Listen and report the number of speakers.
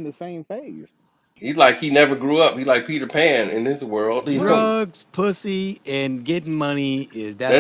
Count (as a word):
three